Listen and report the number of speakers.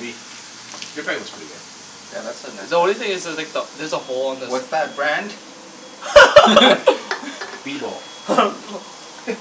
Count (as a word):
three